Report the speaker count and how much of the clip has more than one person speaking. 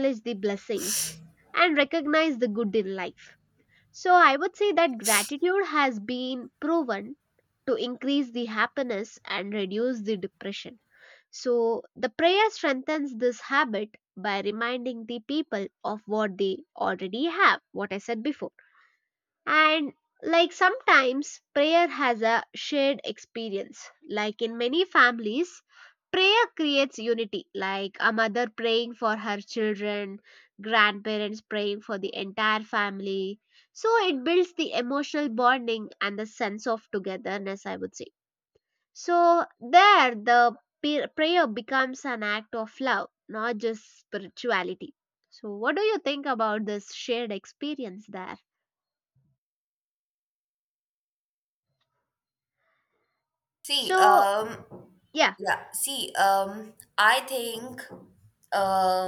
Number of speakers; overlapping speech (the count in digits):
2, about 1%